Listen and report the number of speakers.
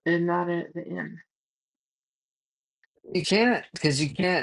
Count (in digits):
2